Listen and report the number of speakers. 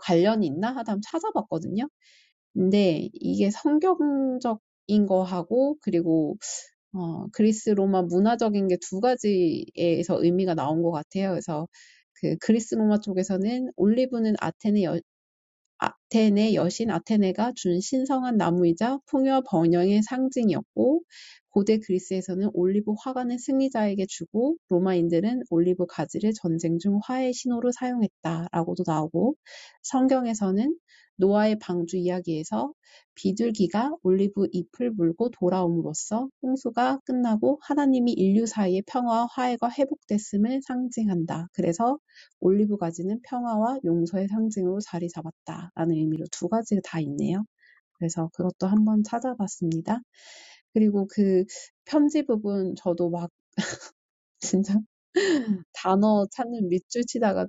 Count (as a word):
one